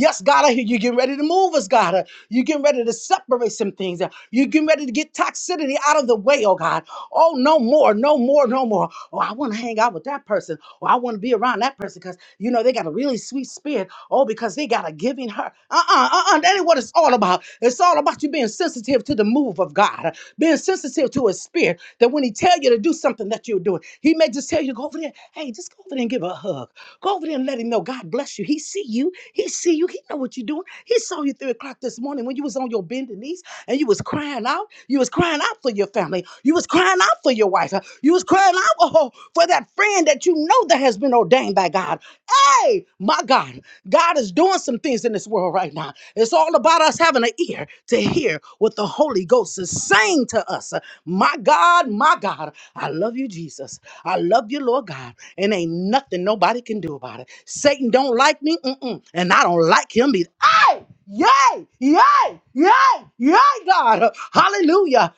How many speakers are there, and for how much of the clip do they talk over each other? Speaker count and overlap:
1, no overlap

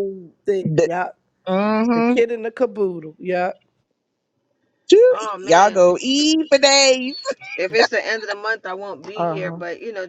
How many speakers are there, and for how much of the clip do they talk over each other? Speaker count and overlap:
3, about 13%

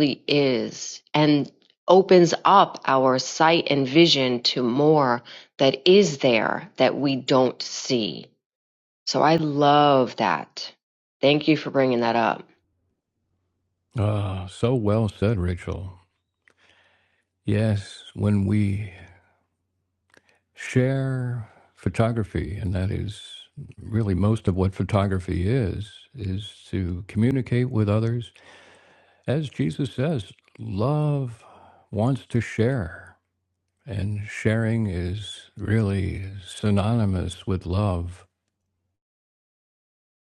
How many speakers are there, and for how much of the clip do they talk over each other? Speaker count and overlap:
2, no overlap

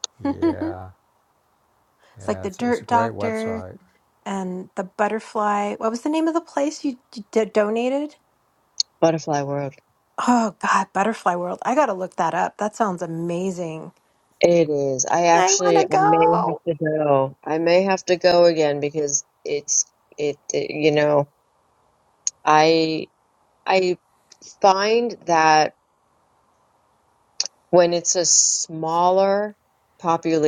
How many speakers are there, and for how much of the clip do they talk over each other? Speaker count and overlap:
3, about 8%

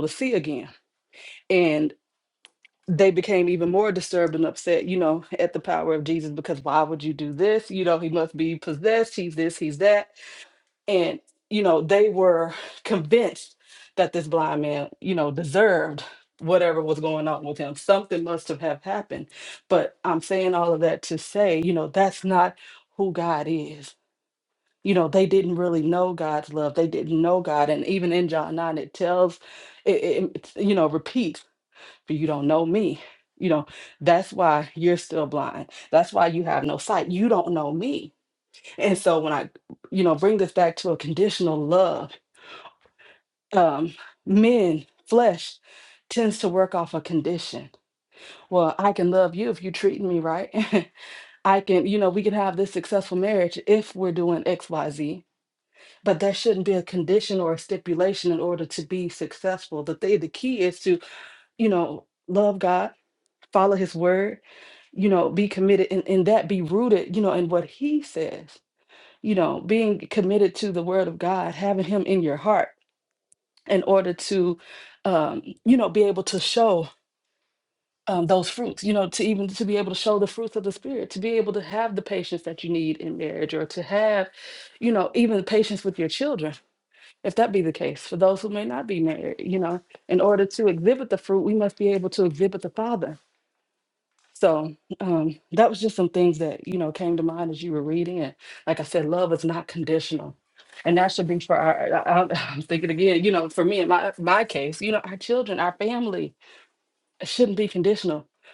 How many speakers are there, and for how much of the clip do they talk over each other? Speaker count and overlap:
1, no overlap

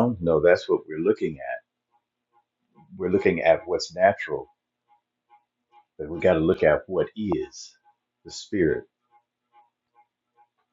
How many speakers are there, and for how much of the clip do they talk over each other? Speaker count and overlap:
1, no overlap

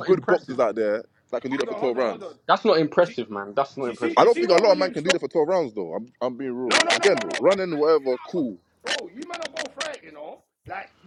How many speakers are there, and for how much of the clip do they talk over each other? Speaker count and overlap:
3, about 39%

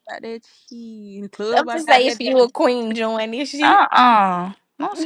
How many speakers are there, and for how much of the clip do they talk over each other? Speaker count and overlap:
3, about 25%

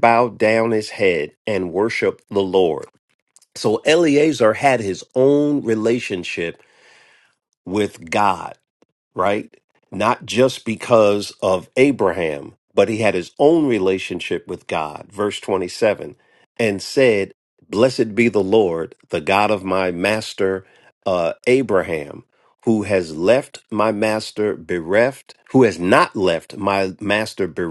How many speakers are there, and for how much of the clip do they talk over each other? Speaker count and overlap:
1, no overlap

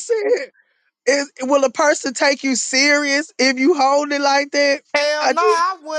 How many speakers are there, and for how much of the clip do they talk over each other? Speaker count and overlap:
2, about 5%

